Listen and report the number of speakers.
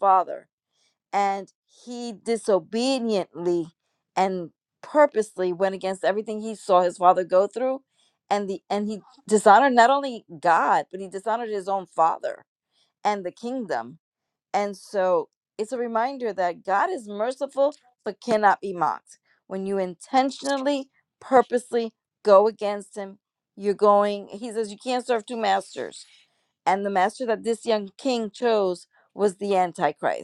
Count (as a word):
one